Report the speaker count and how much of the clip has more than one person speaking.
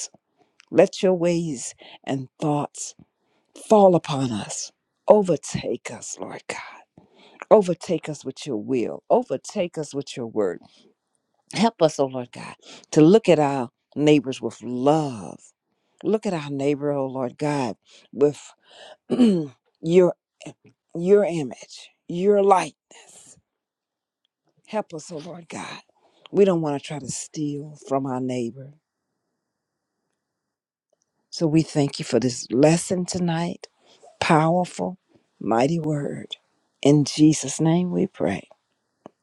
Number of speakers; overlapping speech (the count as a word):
one, no overlap